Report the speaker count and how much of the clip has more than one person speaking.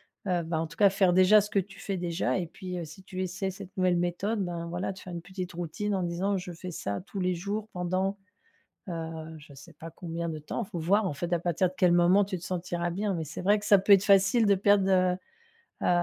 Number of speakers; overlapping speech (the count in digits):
1, no overlap